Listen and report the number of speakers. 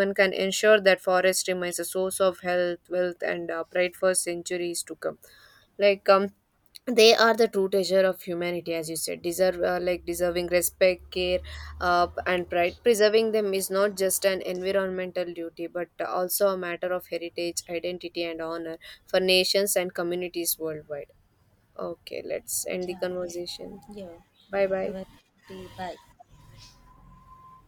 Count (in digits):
2